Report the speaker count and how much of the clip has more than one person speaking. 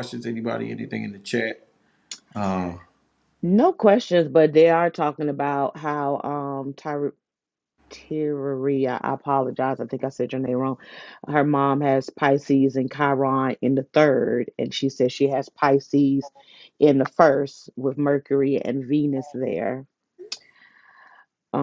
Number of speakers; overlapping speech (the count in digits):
2, no overlap